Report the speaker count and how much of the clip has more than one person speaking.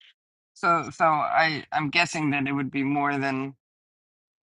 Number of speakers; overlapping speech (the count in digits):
1, no overlap